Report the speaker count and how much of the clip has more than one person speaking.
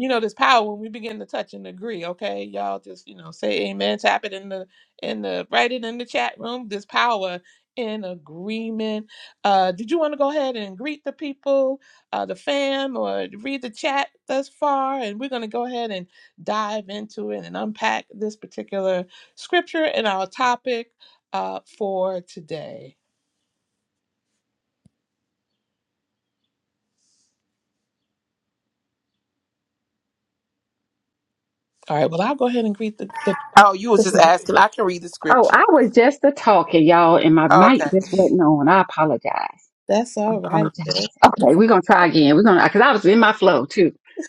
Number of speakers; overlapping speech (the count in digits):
3, about 3%